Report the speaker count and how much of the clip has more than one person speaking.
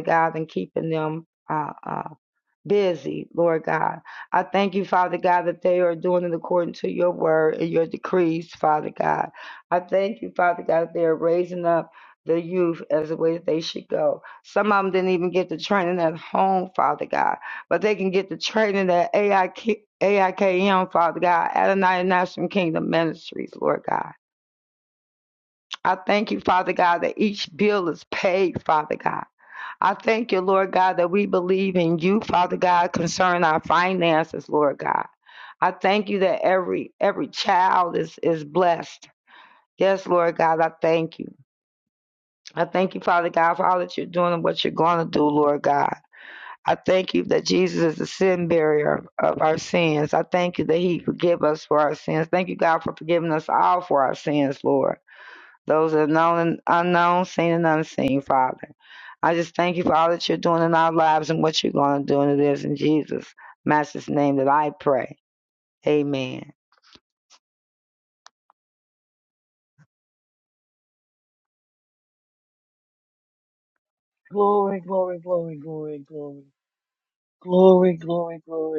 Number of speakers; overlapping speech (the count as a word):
two, no overlap